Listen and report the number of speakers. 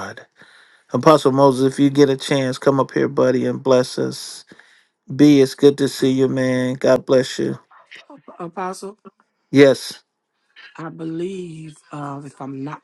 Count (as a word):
two